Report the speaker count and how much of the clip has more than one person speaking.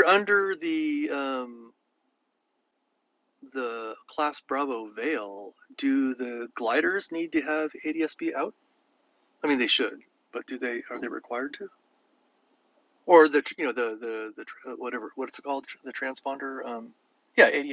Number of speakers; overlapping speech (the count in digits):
1, no overlap